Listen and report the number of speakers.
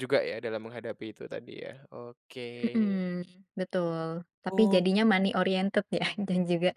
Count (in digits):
2